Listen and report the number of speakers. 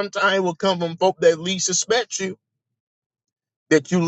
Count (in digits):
1